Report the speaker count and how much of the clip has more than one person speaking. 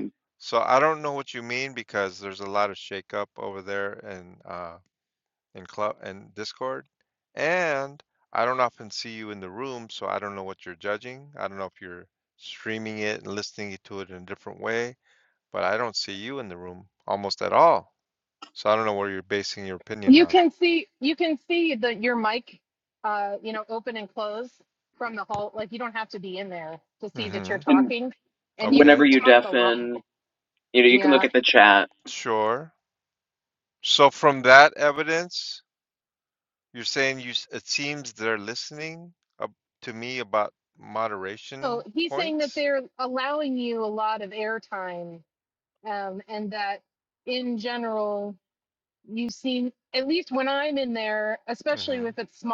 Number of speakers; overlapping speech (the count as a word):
three, about 6%